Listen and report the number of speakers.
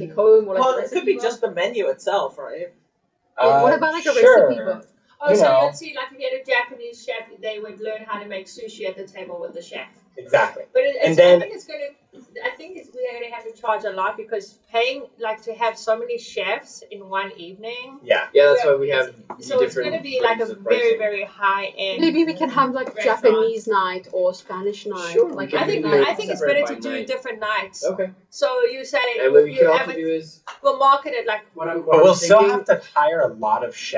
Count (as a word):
five